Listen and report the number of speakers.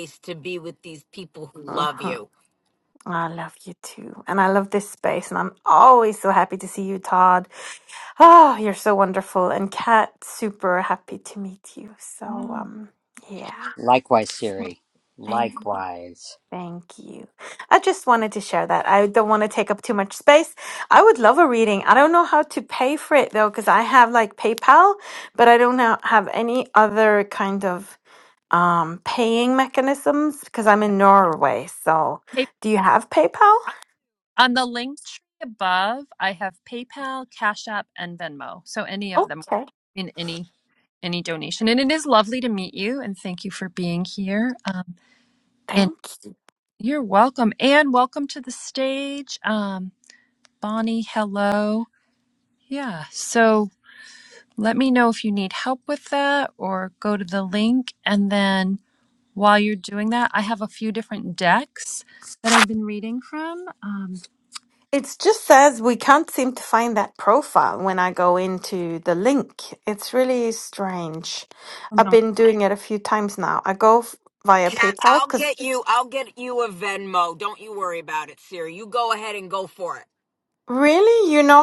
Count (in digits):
4